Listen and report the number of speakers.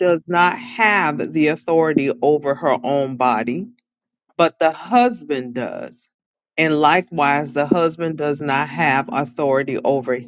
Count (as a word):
one